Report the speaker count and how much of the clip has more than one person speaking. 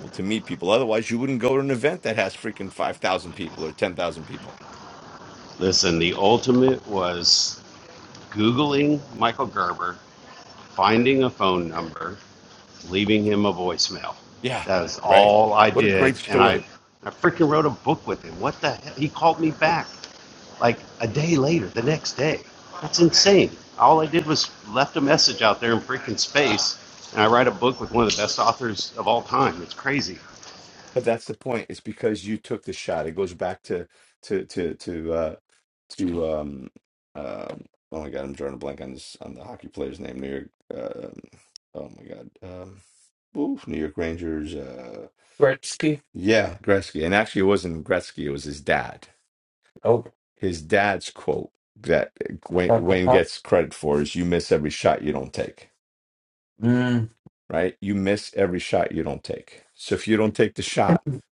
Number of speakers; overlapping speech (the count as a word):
three, about 3%